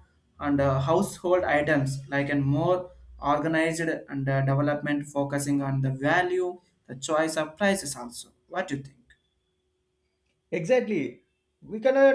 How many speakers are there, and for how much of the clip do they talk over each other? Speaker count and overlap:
2, no overlap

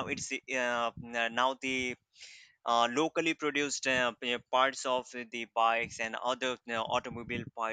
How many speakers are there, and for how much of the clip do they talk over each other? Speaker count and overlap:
1, no overlap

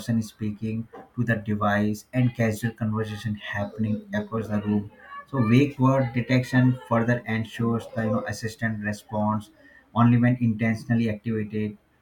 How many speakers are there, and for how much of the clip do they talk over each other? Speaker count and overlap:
1, no overlap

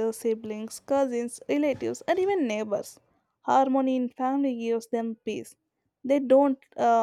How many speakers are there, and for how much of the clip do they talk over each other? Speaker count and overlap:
1, no overlap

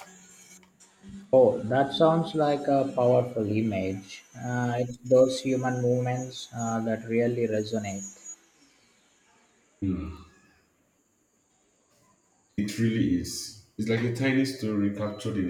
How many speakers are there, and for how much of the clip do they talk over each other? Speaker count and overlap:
2, no overlap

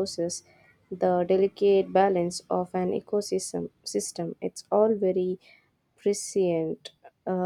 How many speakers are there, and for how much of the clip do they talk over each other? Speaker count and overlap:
1, no overlap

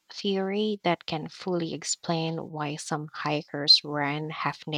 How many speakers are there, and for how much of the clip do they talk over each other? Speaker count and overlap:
1, no overlap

